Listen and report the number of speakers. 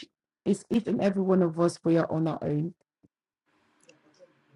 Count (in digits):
1